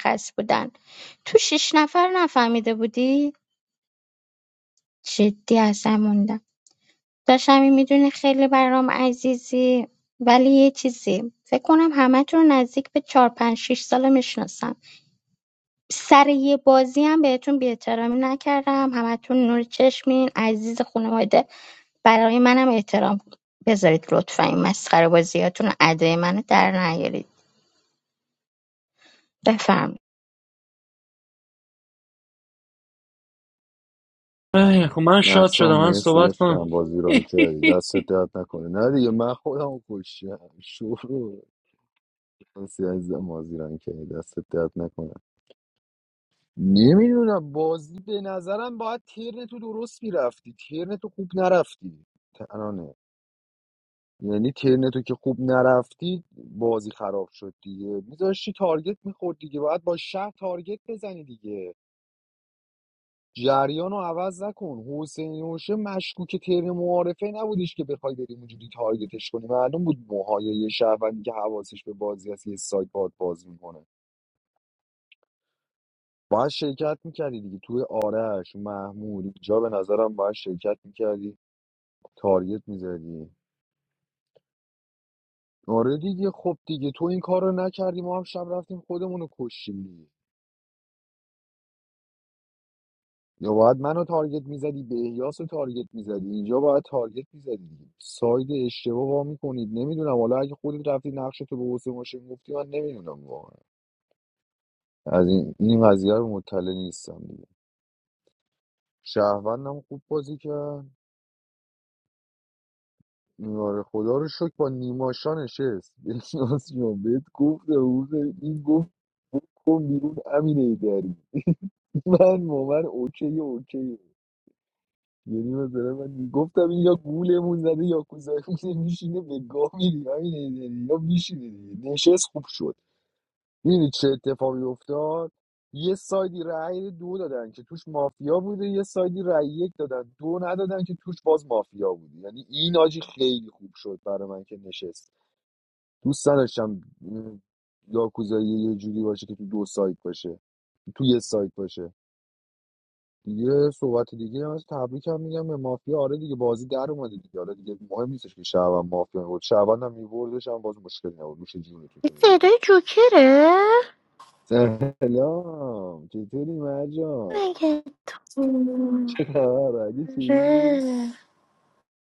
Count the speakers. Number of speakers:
four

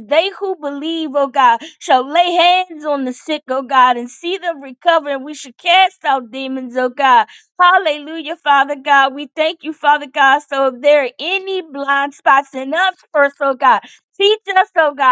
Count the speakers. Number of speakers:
one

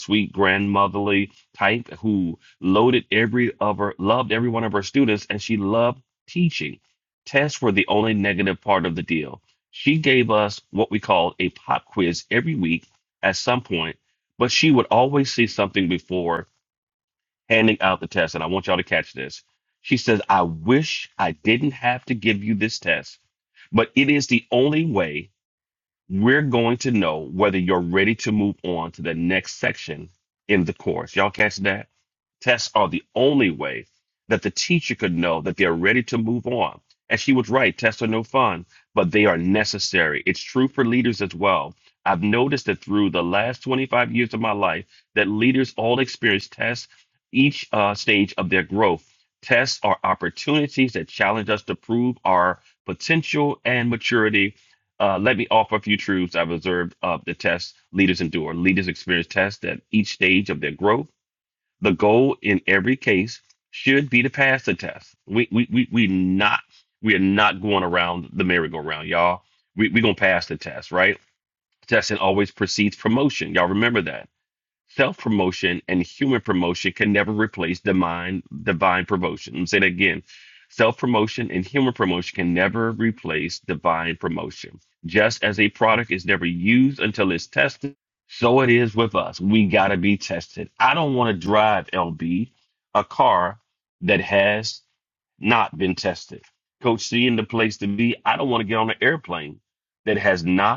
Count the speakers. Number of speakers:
one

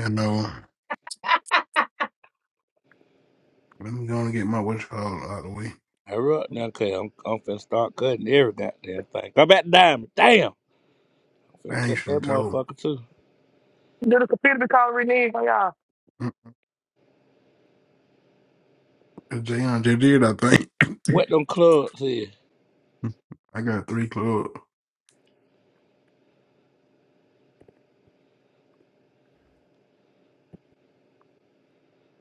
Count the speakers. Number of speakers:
three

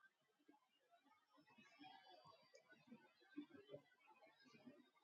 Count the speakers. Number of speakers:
zero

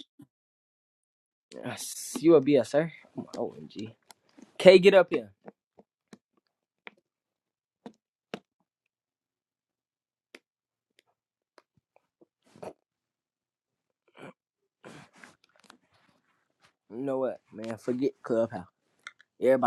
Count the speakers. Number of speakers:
one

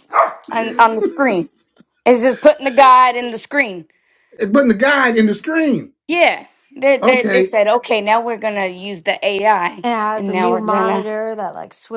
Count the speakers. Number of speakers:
three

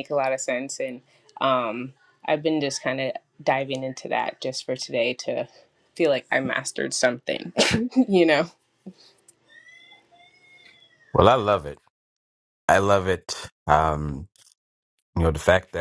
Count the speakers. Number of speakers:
two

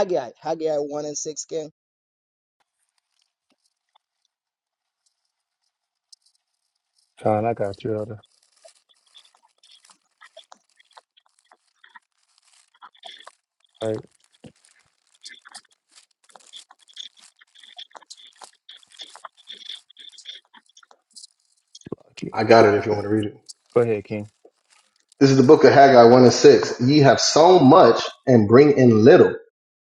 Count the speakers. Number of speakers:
three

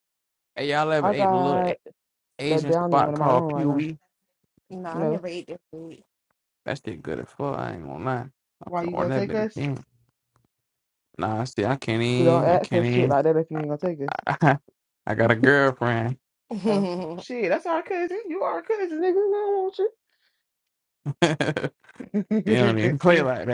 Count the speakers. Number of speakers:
three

